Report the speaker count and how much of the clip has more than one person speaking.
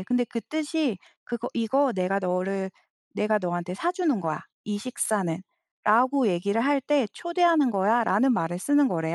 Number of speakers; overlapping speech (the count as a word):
one, no overlap